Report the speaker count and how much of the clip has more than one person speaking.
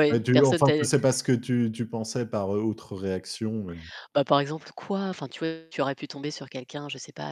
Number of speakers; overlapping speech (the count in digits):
2, about 11%